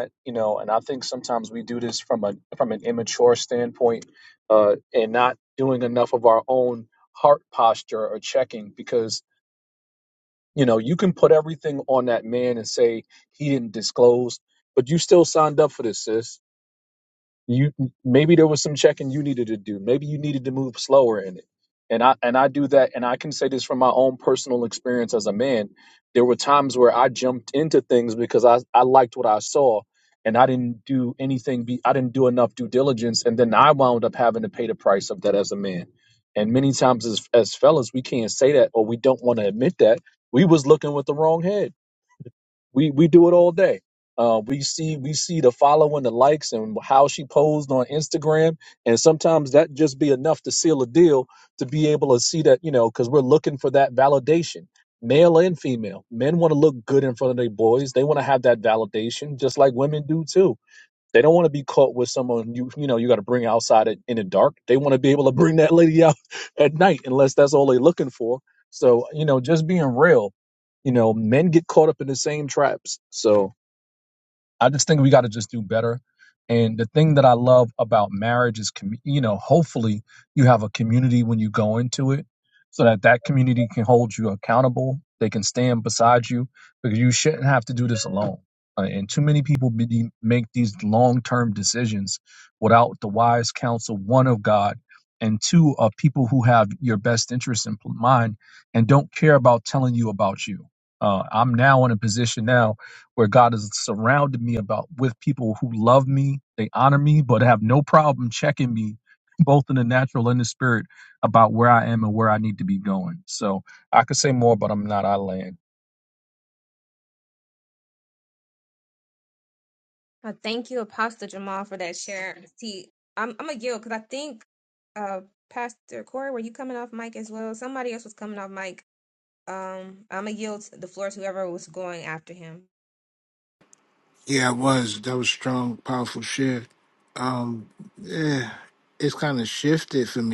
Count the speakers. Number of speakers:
3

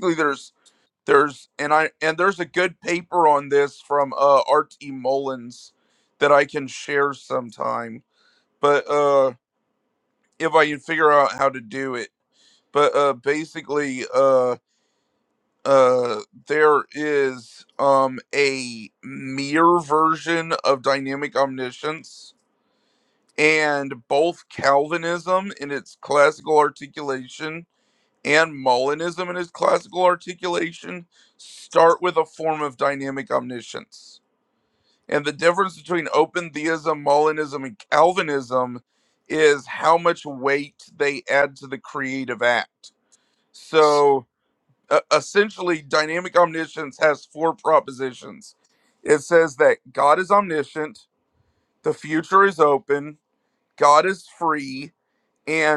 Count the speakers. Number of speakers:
1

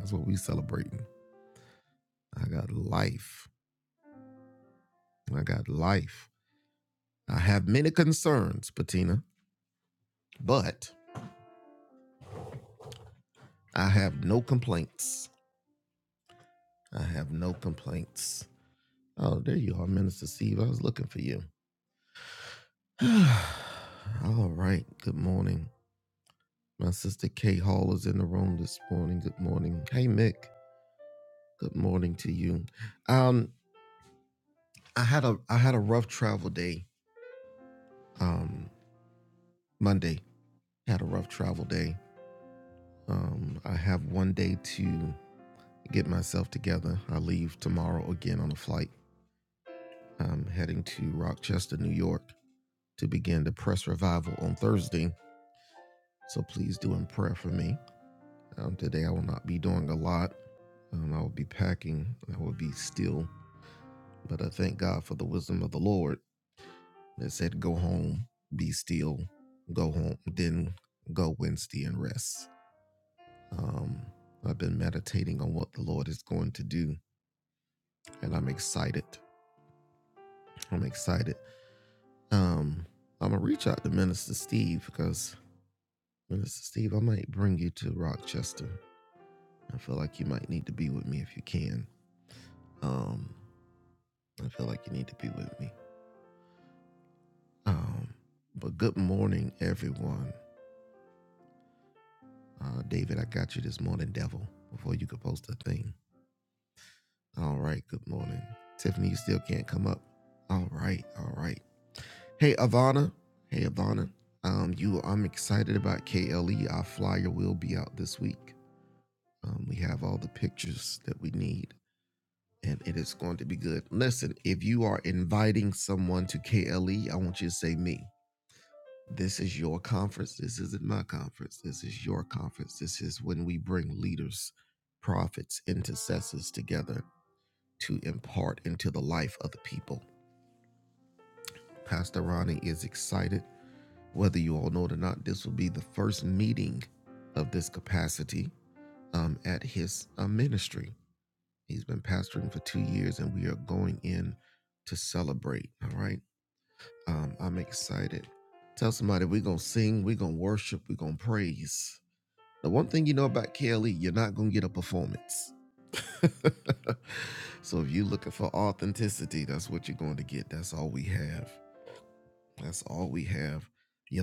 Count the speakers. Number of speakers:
1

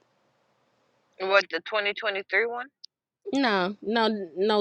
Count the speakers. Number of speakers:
2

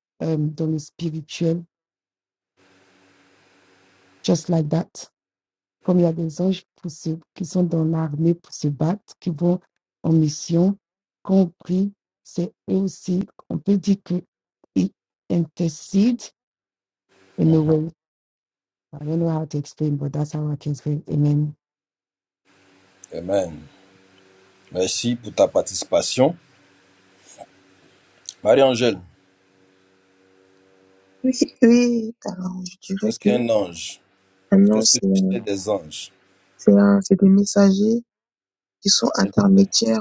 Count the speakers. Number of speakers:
3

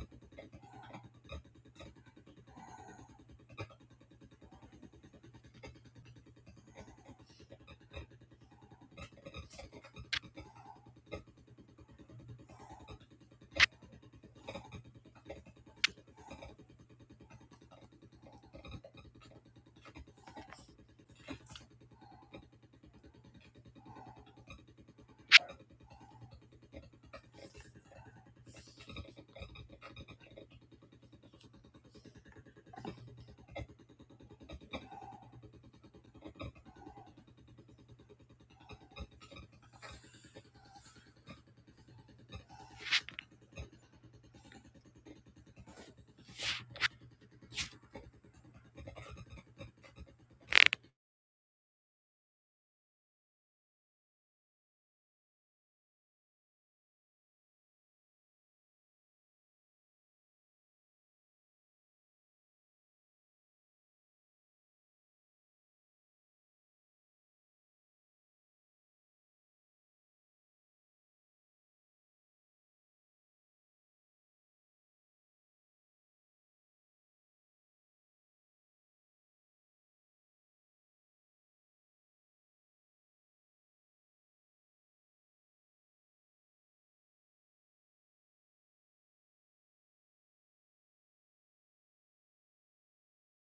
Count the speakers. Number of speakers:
0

